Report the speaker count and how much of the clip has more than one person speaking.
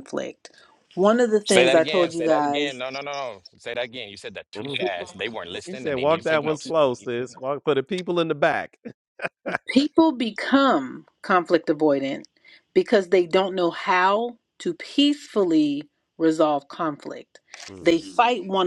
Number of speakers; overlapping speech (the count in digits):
3, about 15%